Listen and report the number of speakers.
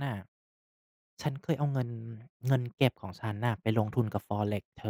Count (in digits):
1